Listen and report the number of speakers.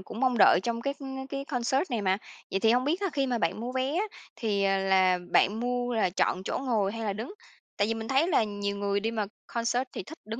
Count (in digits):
1